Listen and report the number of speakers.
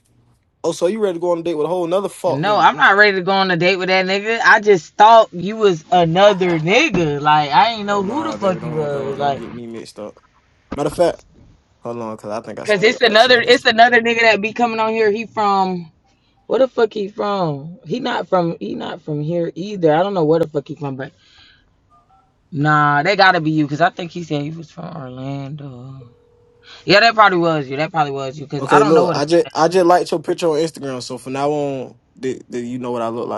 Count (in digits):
2